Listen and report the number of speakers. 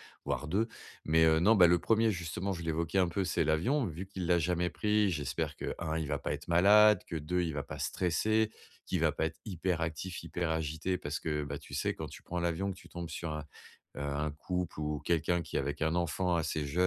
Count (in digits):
1